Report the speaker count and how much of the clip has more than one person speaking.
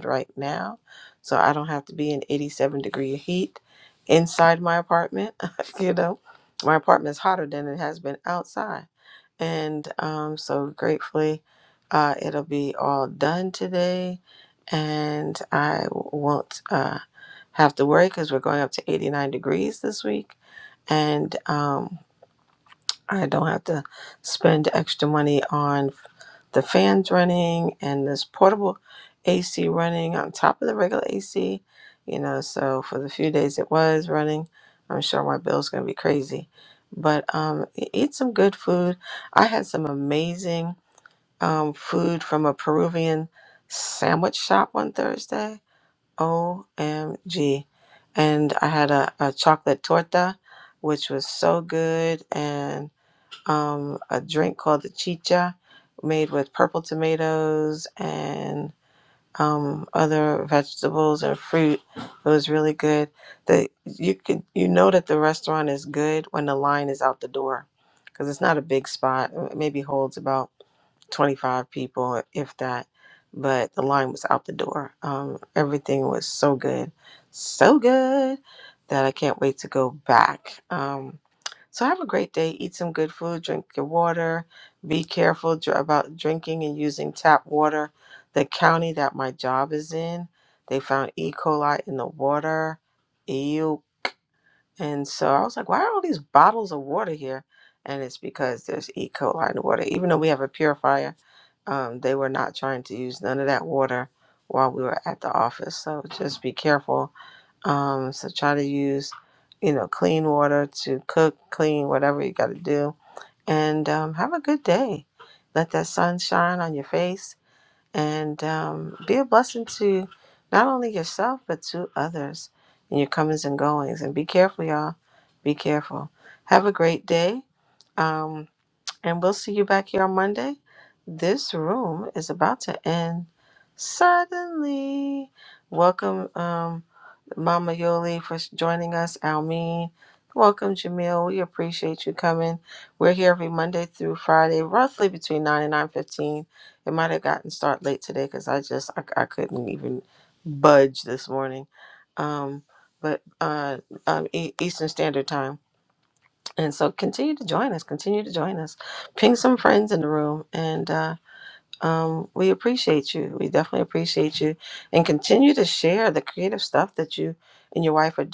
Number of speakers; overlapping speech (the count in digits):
1, no overlap